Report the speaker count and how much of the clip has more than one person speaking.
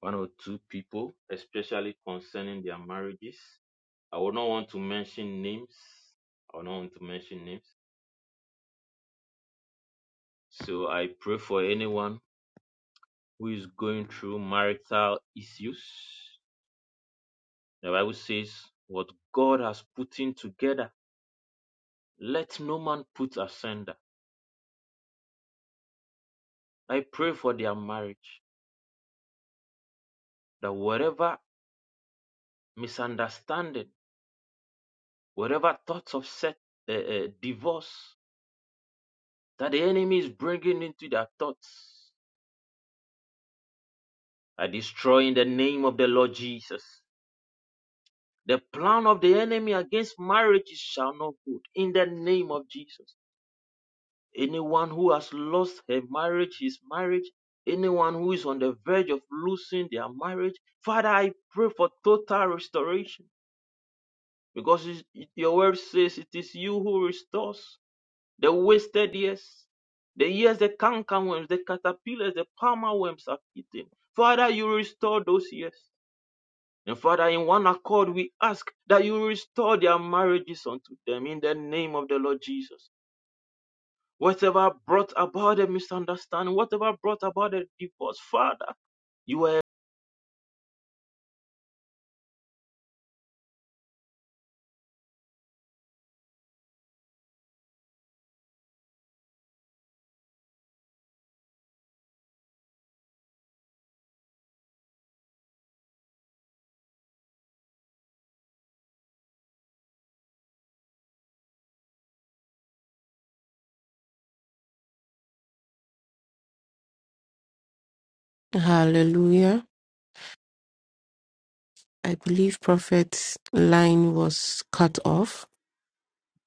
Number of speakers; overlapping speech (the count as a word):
two, no overlap